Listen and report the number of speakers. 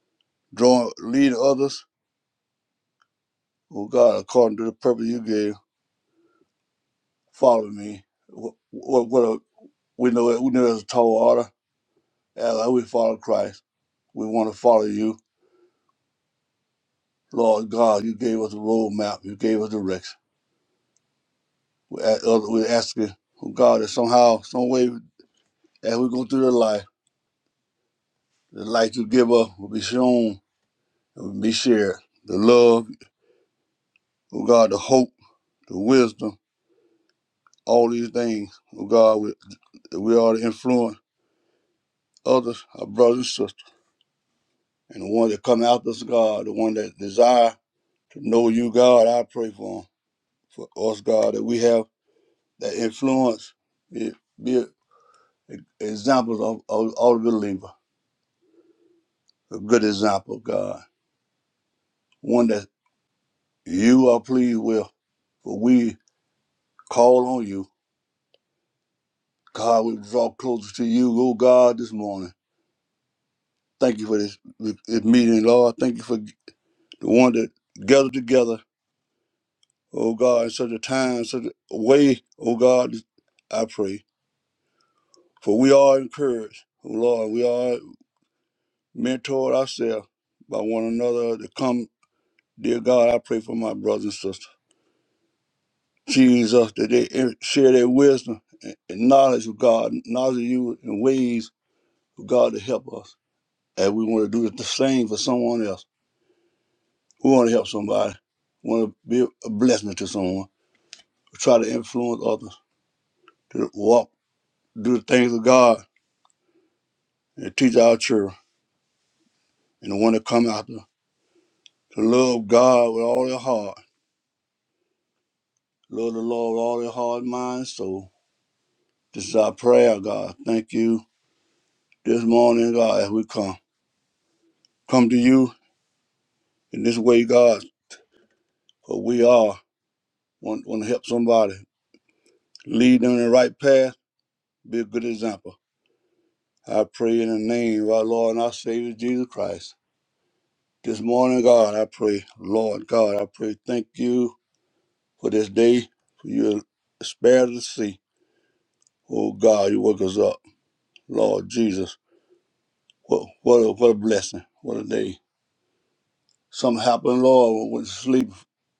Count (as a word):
one